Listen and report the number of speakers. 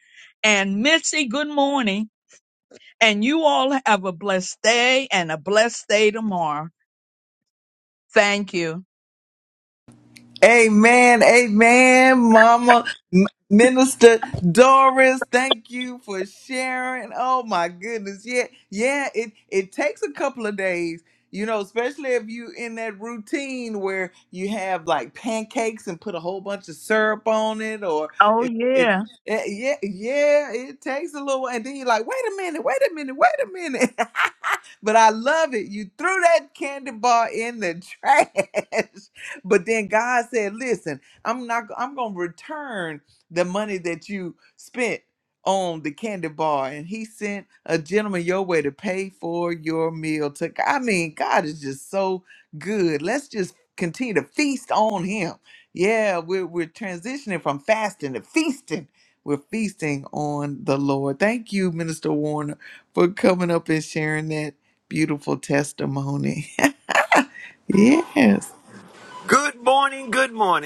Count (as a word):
three